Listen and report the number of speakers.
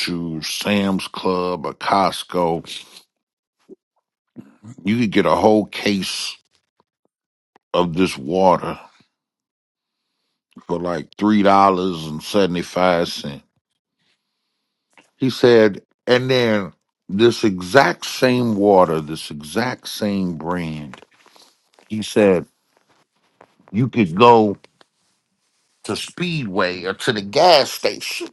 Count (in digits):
1